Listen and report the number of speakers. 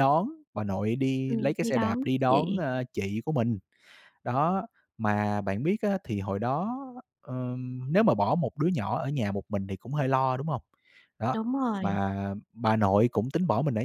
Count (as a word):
two